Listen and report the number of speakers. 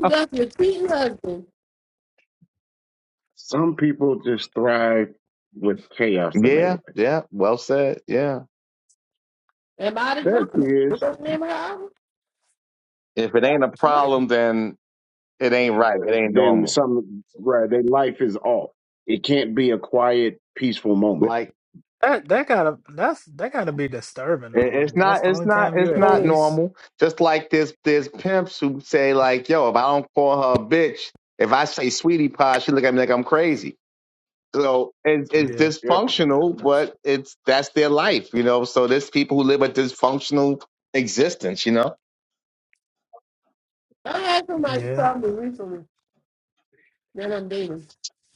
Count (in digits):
4